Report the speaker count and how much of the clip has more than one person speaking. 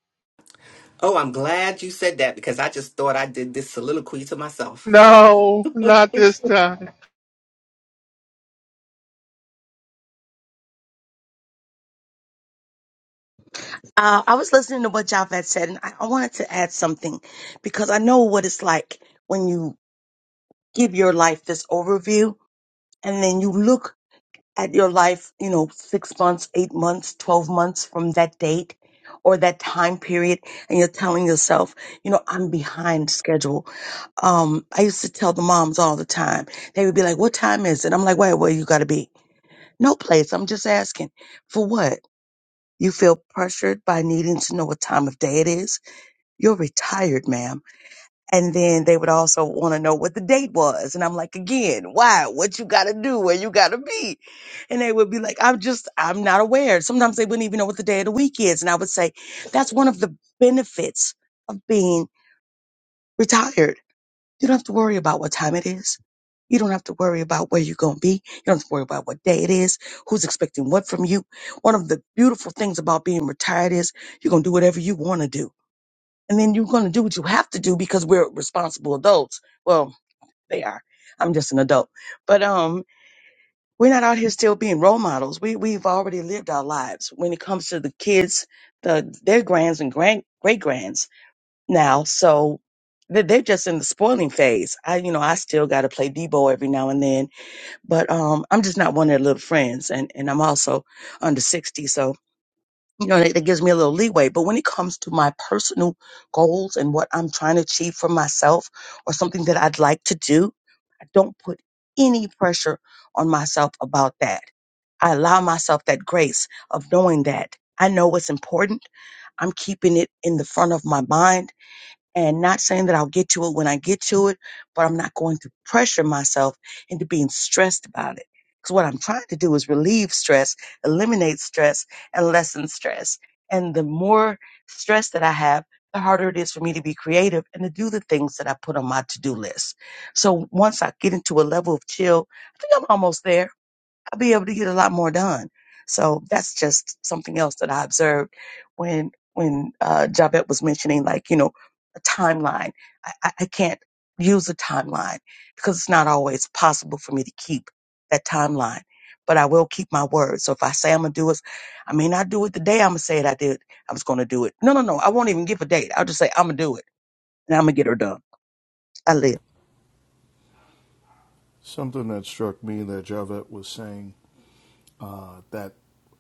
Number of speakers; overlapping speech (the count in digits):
4, no overlap